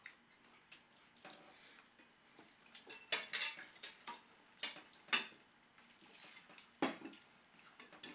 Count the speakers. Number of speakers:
0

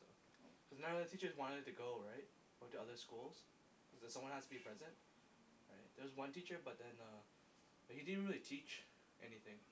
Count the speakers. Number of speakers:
1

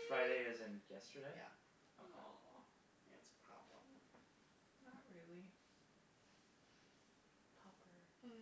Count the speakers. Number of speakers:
3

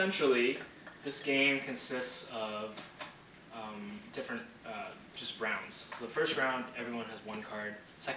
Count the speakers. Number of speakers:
1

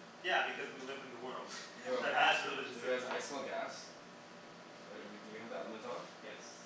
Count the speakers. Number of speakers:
2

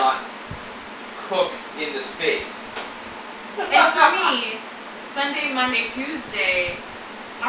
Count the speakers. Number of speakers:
2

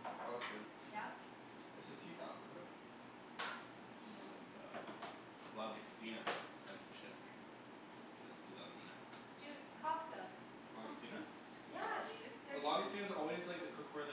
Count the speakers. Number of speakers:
3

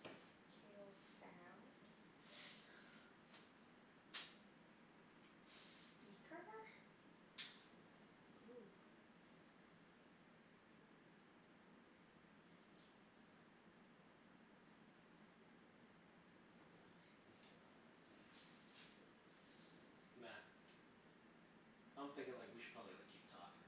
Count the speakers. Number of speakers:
2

